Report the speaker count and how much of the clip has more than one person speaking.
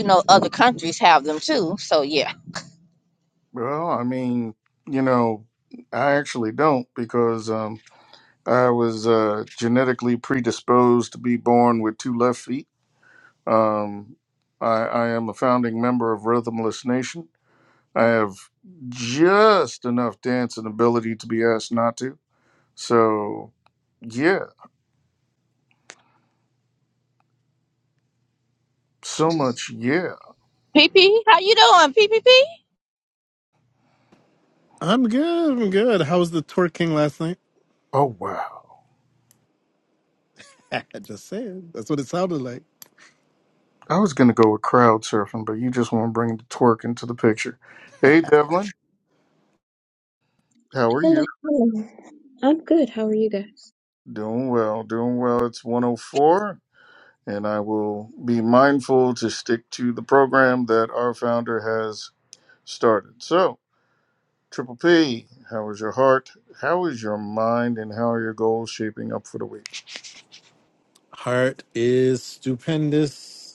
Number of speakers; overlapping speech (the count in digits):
4, under 1%